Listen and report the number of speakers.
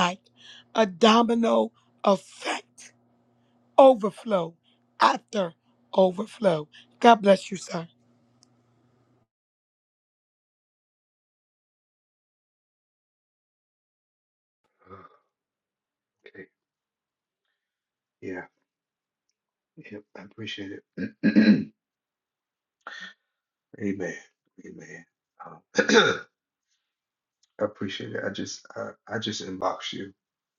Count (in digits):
2